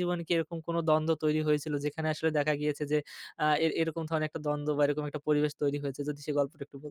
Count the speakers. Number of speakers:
one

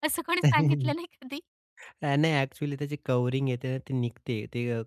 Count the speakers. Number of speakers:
two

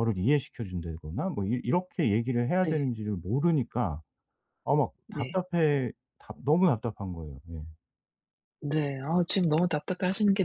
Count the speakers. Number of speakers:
two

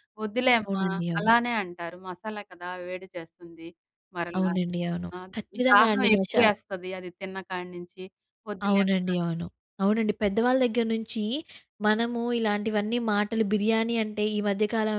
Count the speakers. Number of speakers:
two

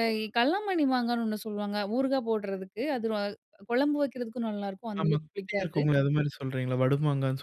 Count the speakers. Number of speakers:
two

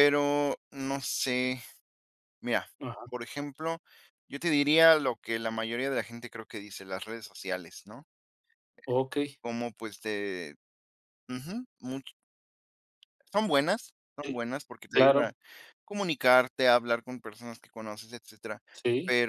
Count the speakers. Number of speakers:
two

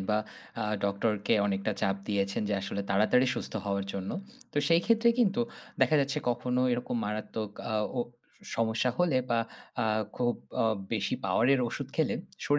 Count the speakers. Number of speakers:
one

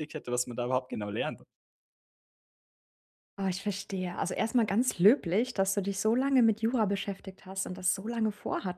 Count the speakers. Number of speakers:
two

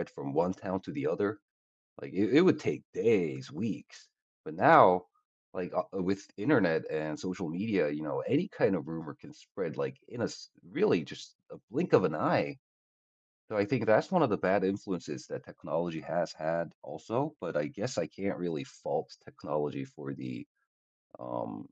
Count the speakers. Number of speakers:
one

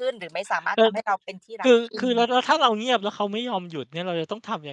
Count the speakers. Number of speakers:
two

